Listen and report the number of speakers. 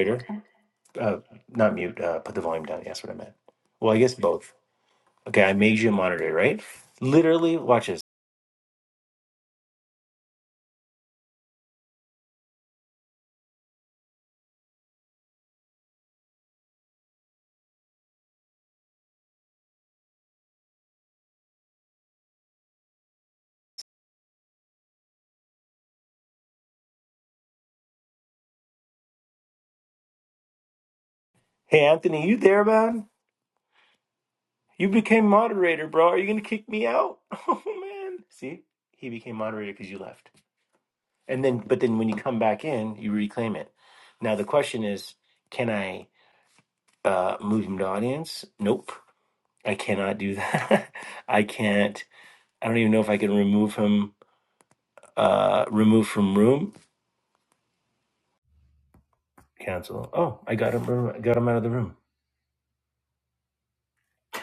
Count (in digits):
1